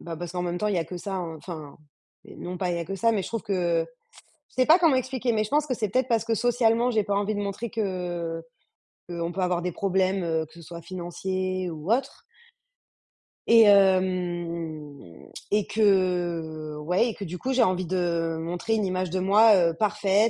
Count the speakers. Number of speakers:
one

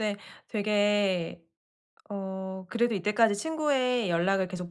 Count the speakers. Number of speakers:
one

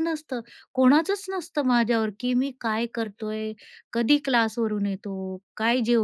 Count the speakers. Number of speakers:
one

